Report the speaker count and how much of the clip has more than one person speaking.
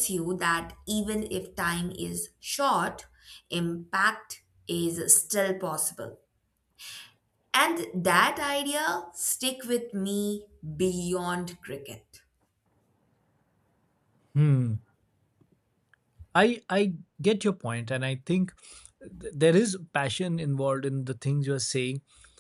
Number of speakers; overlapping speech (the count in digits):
2, no overlap